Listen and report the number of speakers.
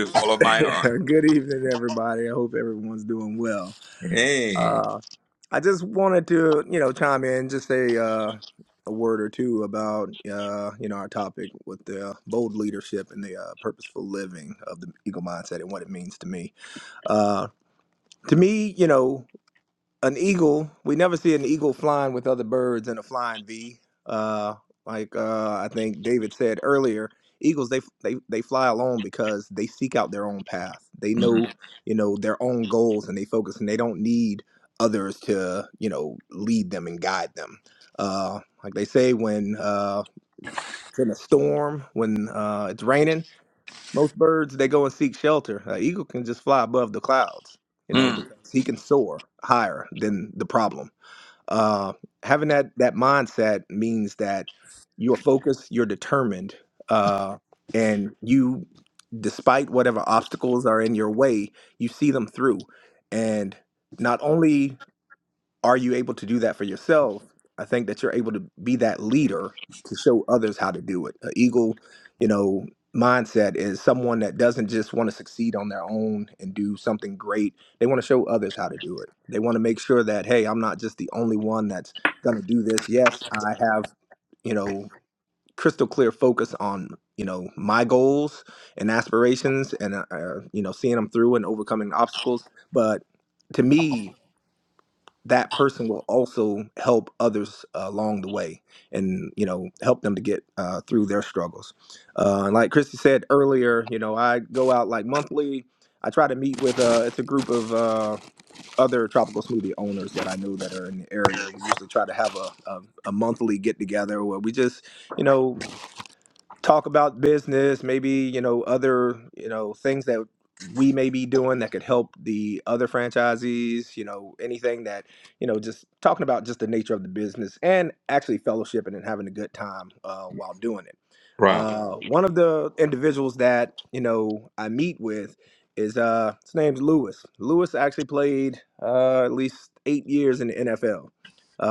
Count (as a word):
two